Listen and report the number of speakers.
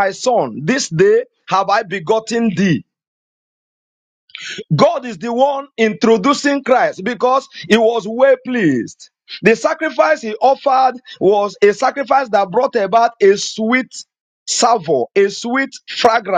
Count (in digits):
1